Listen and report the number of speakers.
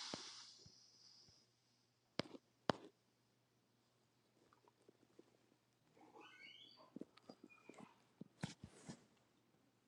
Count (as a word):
zero